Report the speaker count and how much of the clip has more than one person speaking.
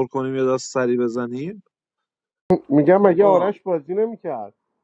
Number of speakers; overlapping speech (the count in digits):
2, about 10%